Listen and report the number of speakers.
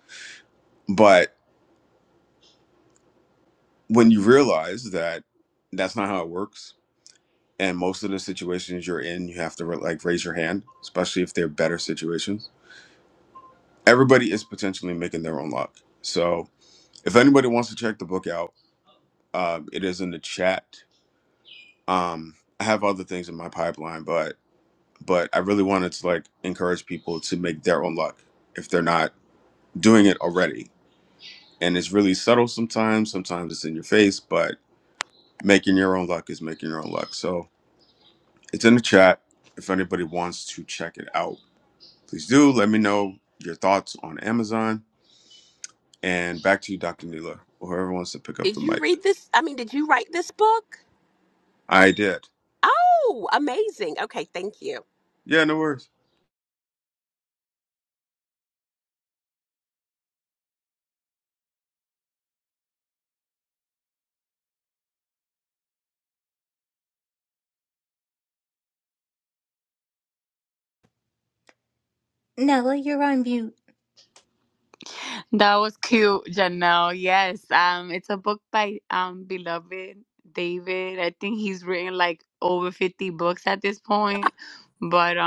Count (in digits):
4